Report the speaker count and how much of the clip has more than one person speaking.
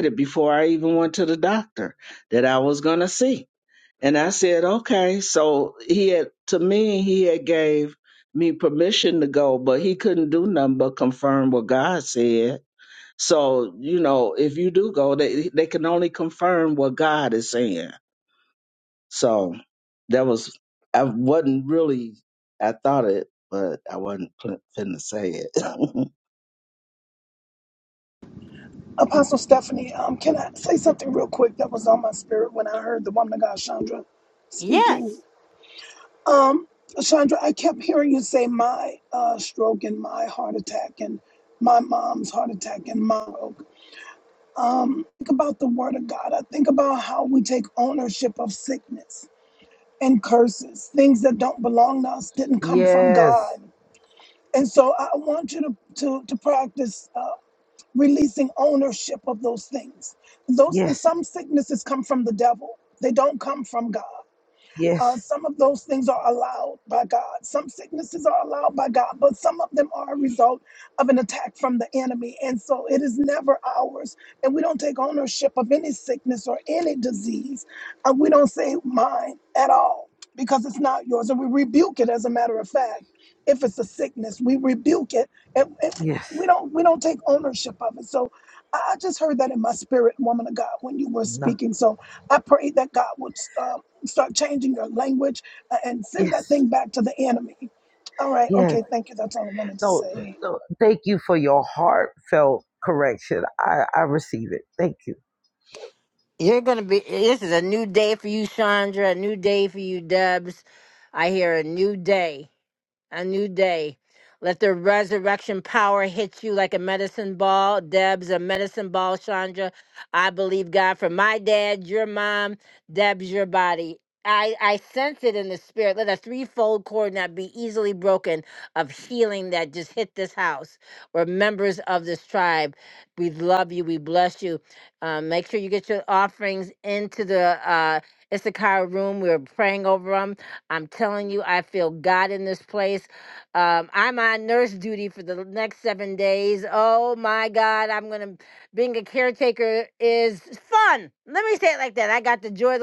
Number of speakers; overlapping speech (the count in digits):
4, about 2%